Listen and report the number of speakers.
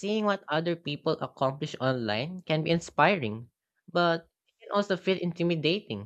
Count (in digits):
1